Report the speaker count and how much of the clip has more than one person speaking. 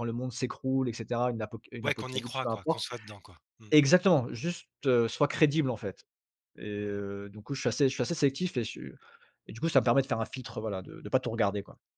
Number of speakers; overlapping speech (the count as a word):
two, about 10%